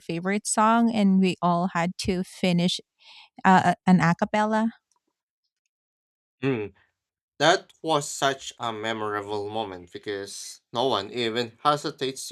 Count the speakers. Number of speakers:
2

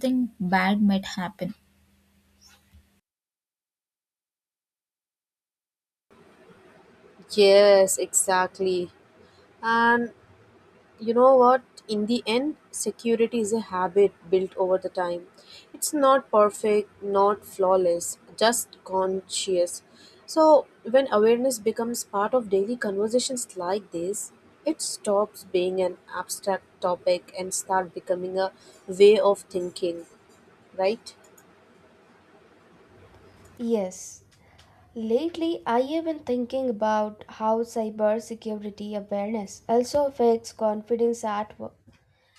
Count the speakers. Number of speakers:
3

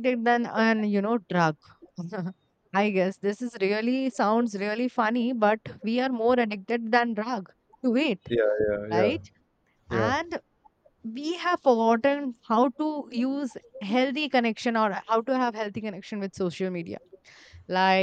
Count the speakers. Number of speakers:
2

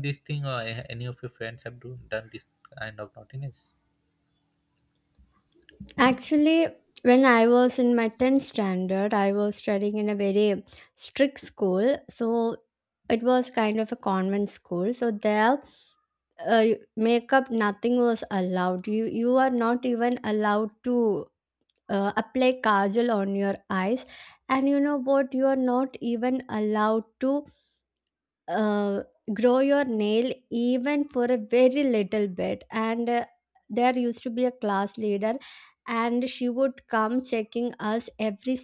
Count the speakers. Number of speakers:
2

